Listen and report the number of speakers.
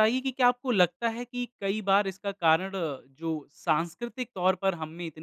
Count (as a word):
one